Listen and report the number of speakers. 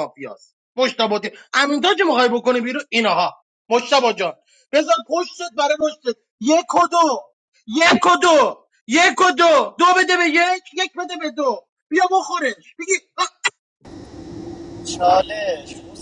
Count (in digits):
2